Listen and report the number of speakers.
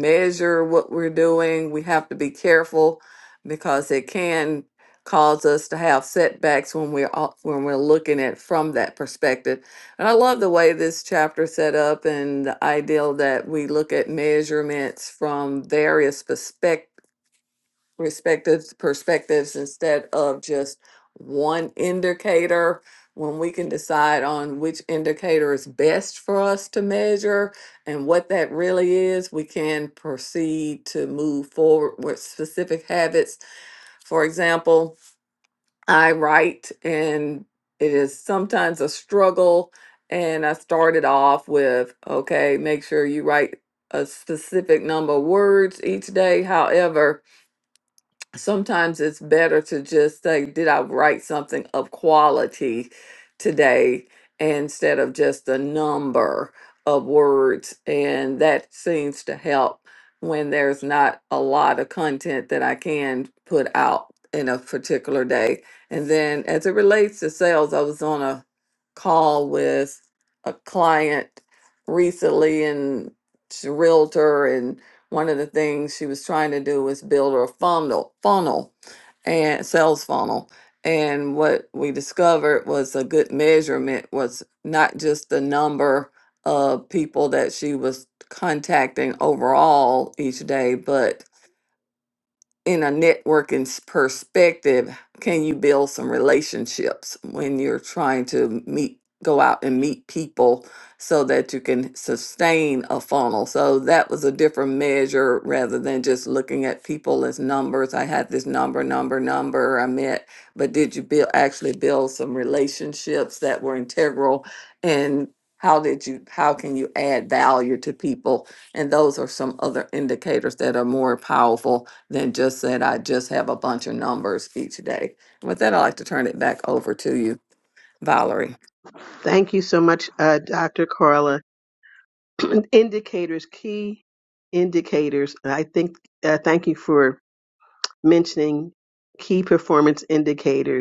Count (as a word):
two